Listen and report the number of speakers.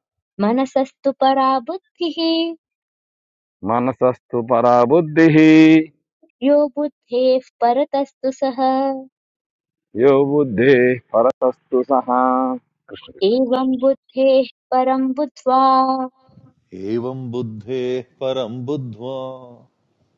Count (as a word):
three